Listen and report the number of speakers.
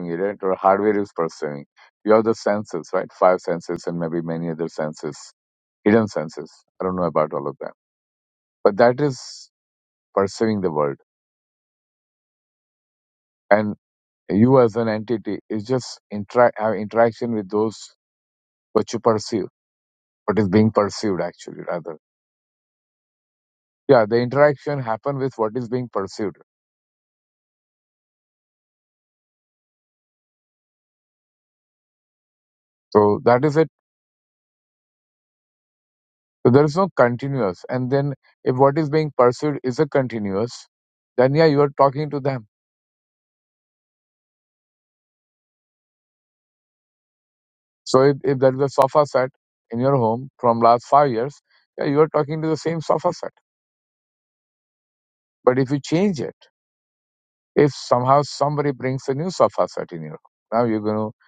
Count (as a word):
one